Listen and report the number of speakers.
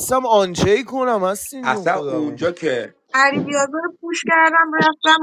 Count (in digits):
3